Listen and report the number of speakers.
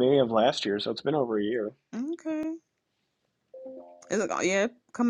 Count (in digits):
2